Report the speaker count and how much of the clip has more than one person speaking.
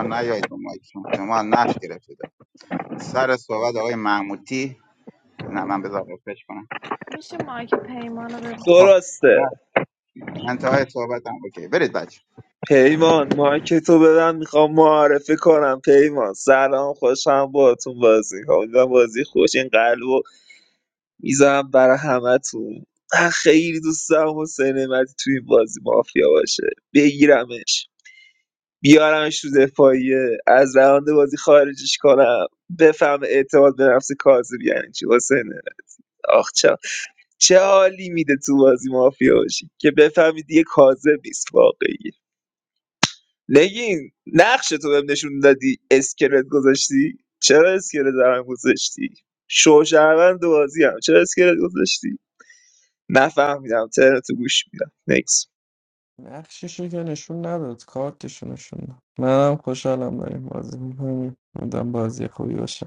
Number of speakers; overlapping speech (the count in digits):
4, under 1%